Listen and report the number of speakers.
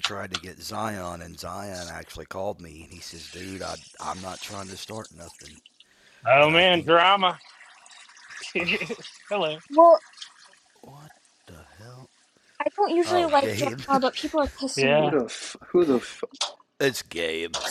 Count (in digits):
4